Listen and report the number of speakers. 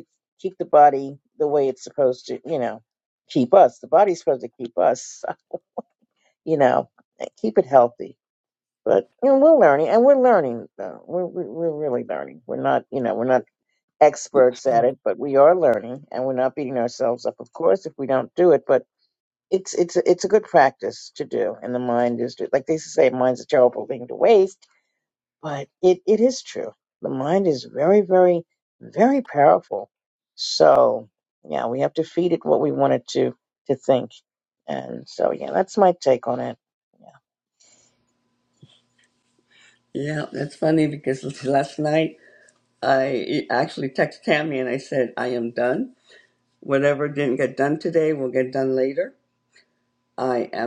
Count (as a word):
two